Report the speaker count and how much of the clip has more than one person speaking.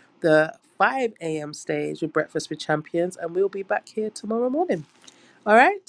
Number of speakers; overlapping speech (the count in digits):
1, no overlap